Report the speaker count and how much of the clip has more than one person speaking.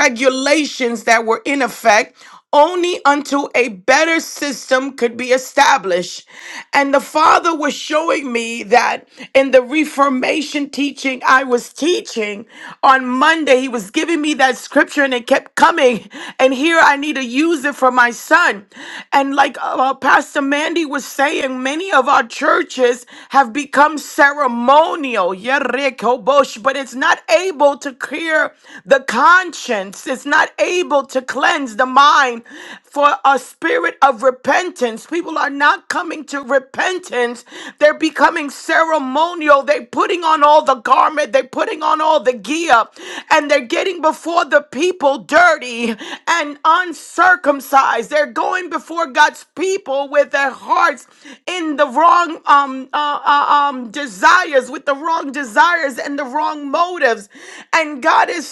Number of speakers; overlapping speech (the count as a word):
one, no overlap